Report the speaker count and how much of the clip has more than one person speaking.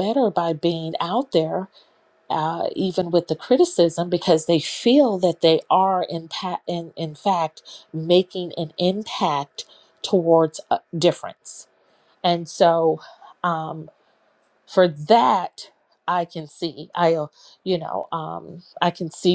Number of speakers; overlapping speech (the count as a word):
one, no overlap